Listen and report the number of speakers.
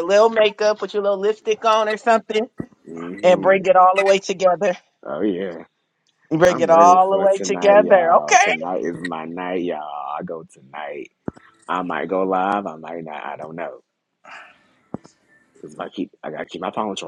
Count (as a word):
two